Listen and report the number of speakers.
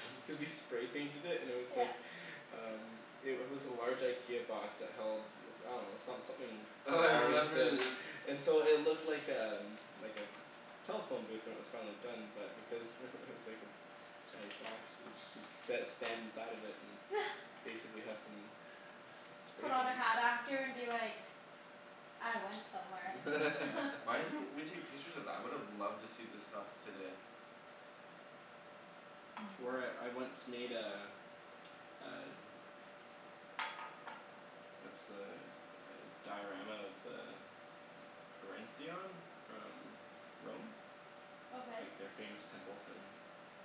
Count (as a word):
three